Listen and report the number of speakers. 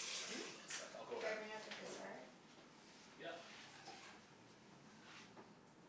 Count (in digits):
2